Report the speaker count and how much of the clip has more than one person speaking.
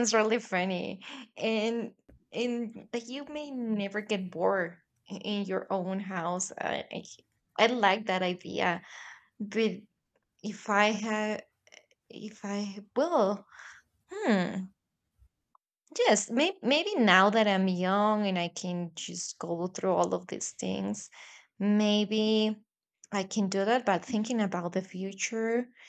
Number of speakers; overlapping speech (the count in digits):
1, no overlap